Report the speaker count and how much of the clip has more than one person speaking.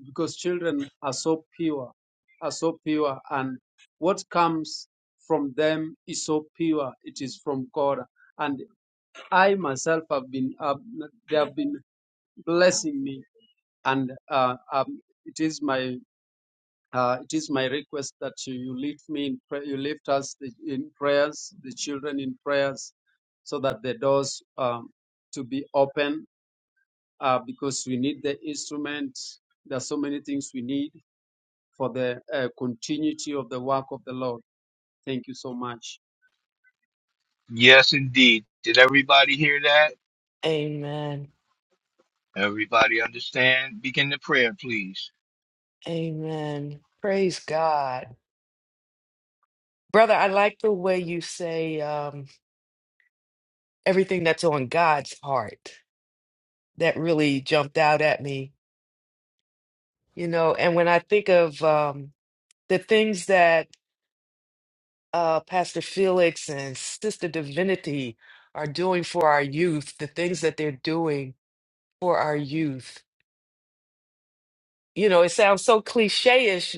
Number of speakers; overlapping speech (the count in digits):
3, no overlap